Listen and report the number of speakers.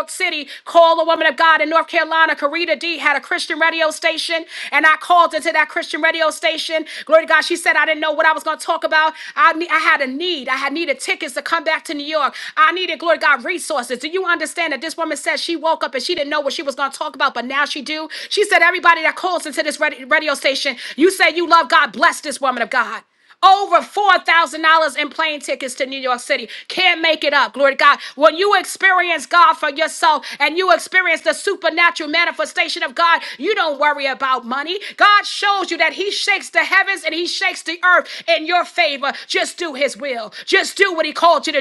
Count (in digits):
1